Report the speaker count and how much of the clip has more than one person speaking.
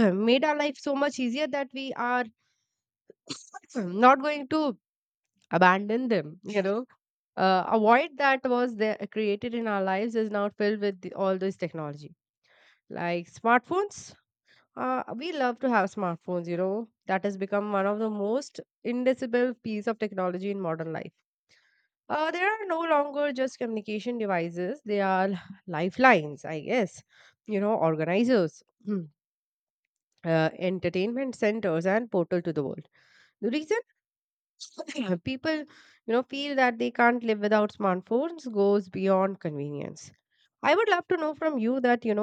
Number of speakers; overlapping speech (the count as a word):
one, no overlap